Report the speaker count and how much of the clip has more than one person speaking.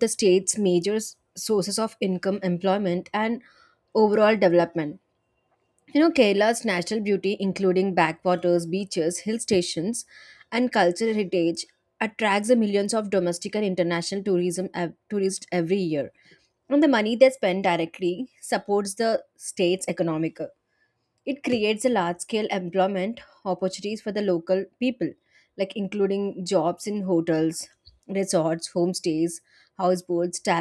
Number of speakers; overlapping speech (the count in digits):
1, no overlap